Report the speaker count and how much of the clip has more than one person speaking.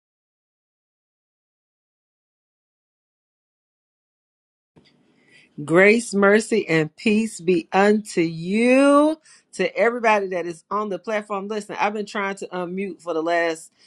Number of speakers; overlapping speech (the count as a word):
one, no overlap